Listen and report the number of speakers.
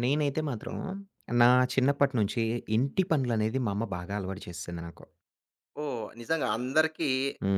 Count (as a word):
two